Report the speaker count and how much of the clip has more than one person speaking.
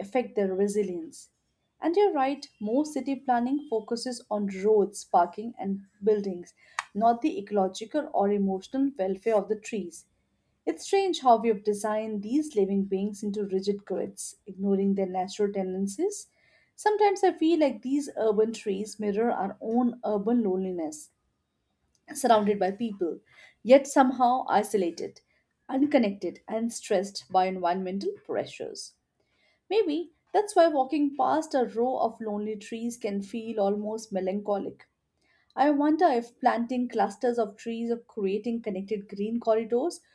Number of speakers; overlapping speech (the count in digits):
1, no overlap